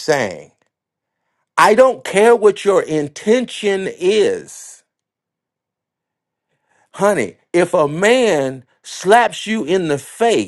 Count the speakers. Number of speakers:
1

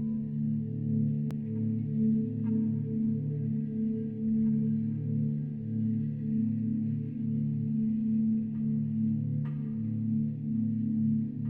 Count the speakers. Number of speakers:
0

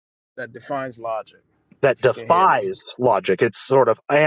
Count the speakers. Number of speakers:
2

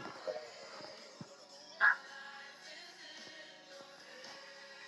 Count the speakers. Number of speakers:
0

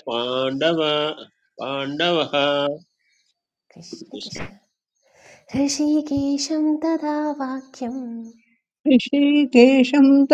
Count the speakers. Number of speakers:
3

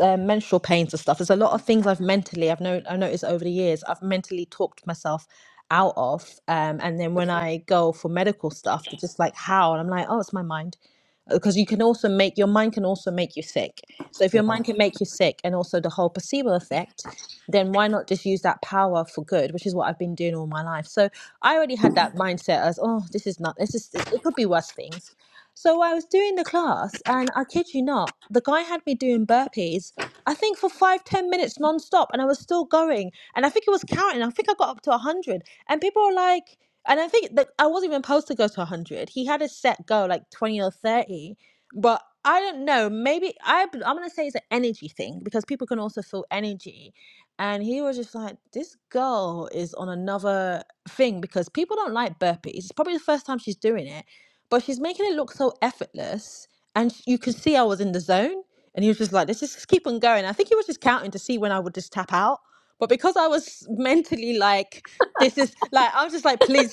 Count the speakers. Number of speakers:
1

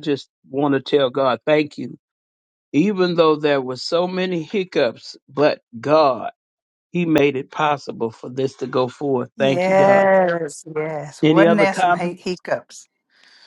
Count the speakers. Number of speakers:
2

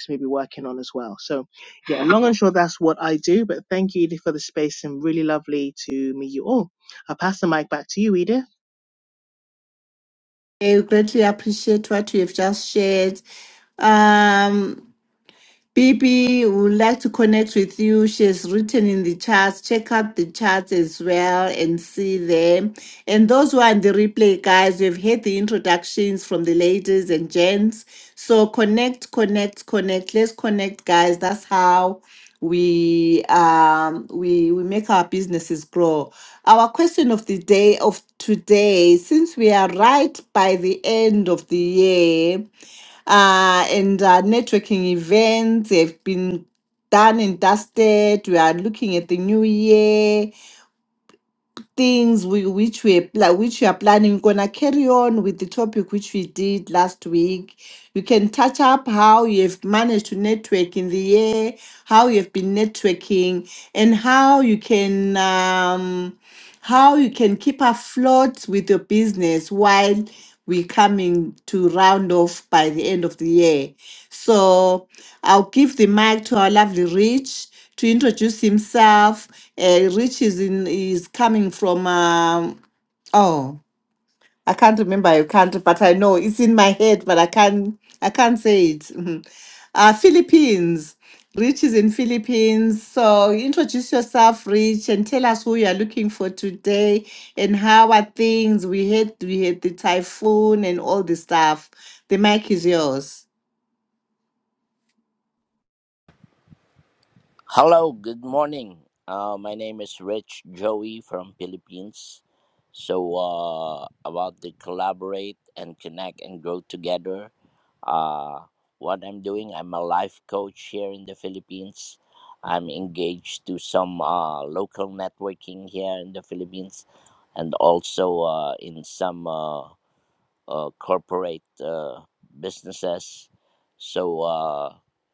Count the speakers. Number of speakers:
3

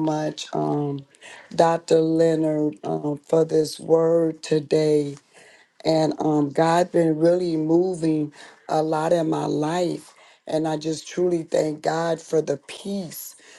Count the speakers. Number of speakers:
1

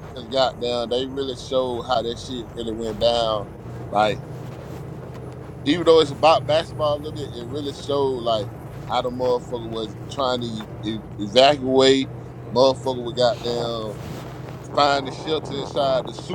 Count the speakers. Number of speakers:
1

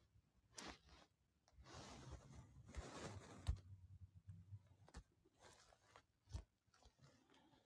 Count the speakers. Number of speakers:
0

